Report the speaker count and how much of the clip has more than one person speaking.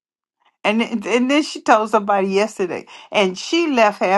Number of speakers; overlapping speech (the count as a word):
one, no overlap